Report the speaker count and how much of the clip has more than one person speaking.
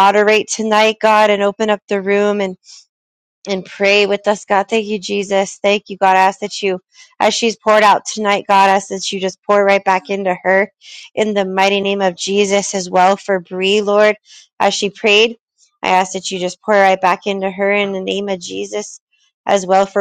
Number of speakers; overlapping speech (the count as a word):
one, no overlap